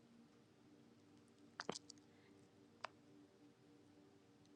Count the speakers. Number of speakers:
zero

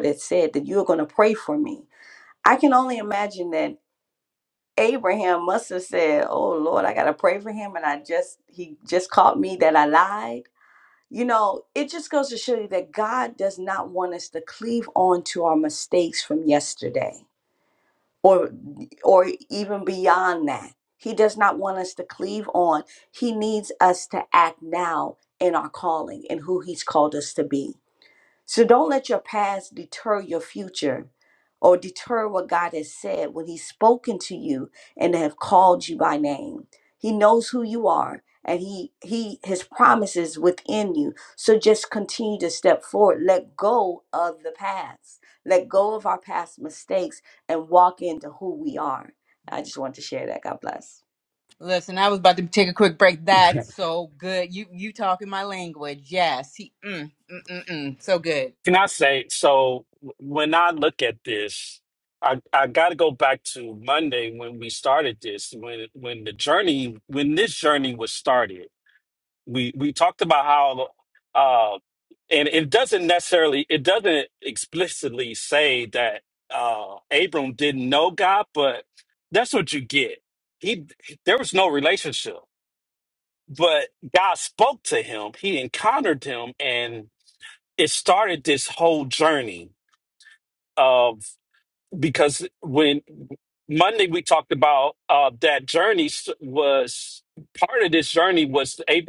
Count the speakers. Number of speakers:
three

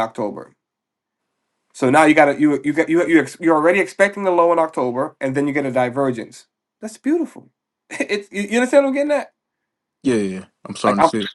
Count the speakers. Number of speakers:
two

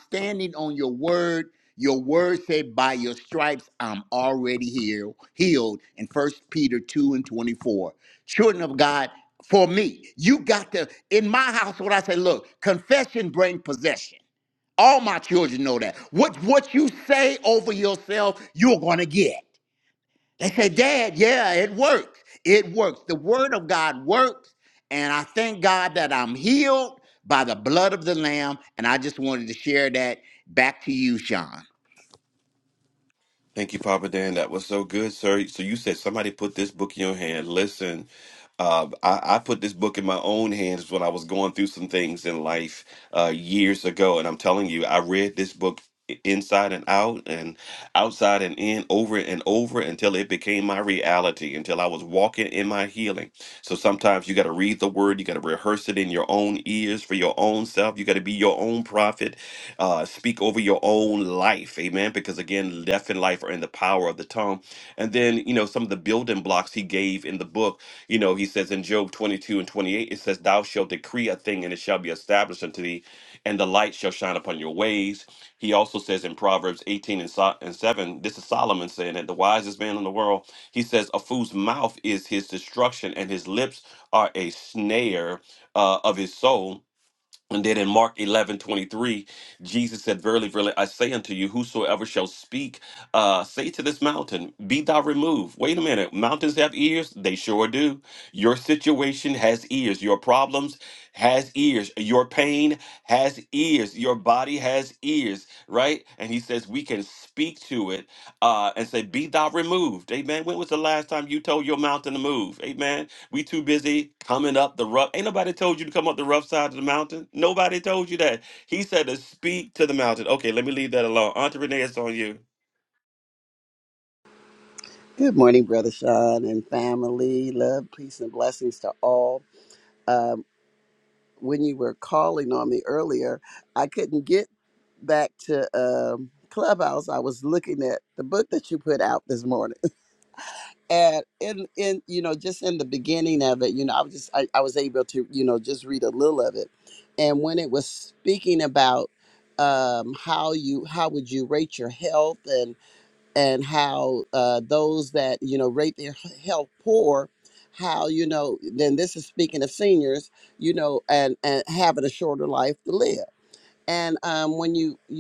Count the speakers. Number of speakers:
three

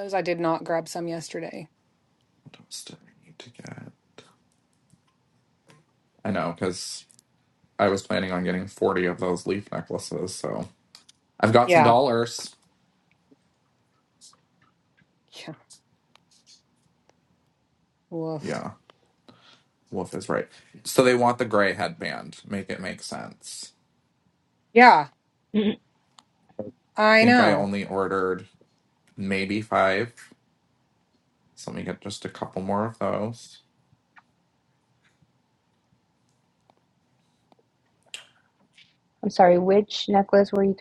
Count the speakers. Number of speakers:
three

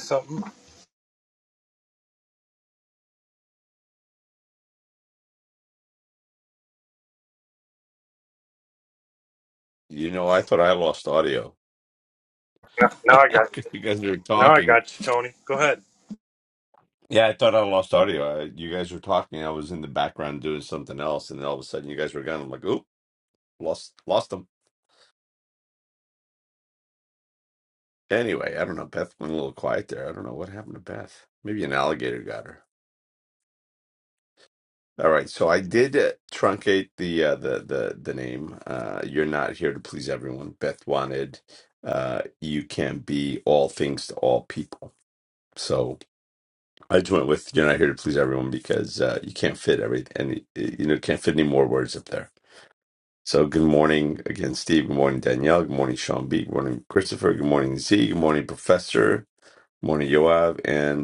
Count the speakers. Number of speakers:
two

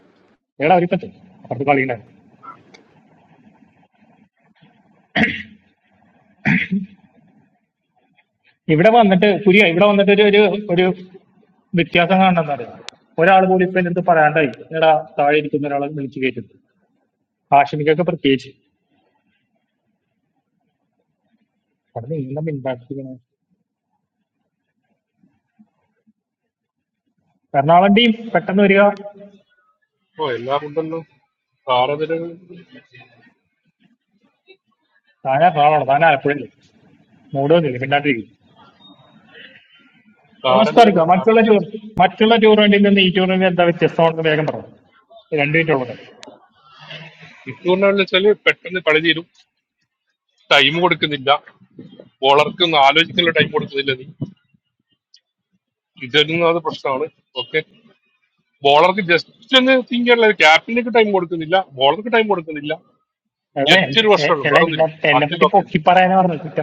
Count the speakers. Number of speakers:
two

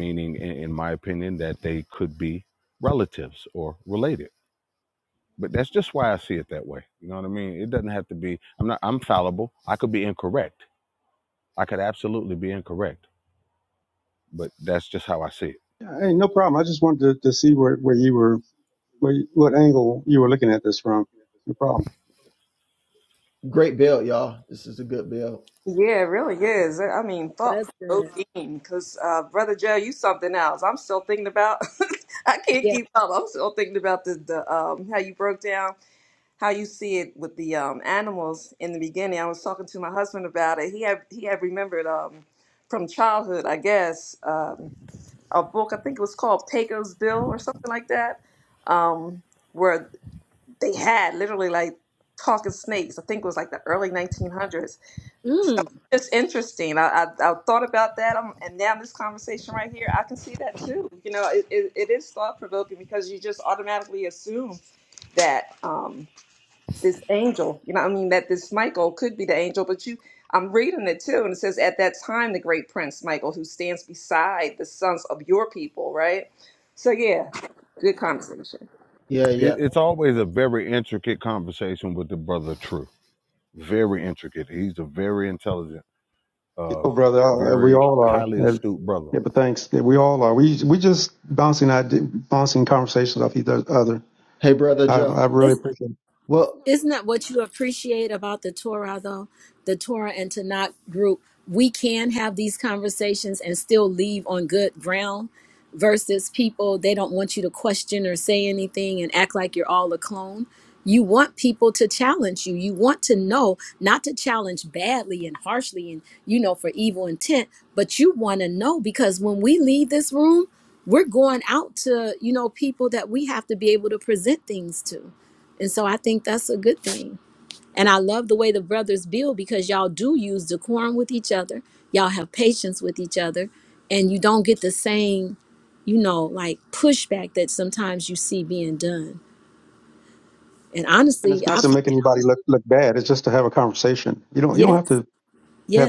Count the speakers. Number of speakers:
five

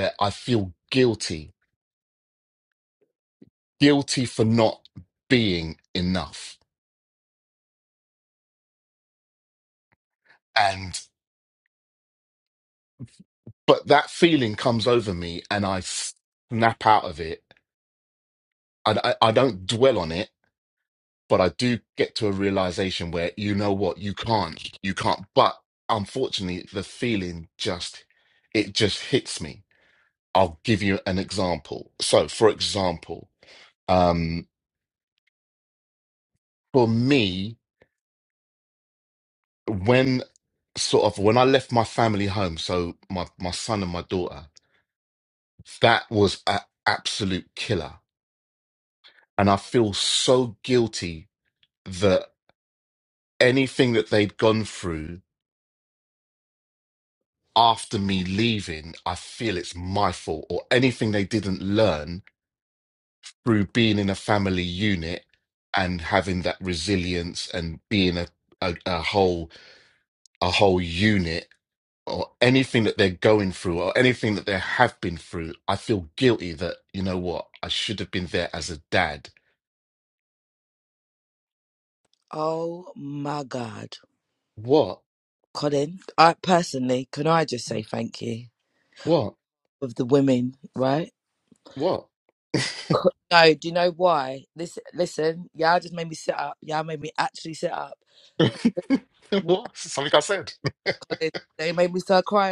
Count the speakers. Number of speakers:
two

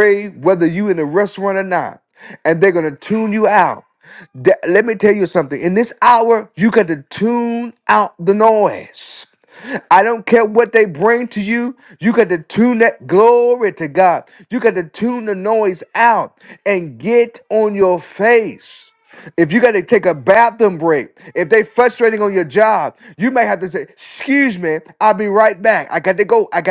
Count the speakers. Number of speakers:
one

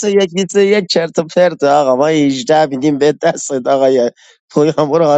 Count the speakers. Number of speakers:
one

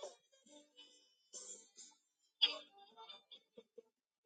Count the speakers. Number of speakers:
zero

